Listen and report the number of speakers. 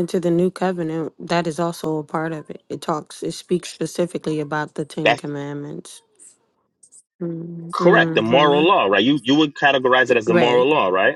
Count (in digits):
2